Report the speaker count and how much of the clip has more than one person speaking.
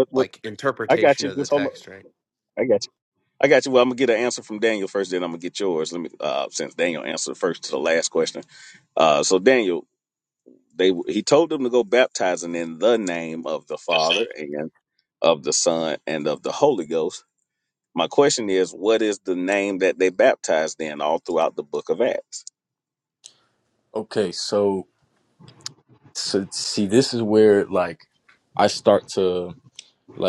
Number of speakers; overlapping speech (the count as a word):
three, about 4%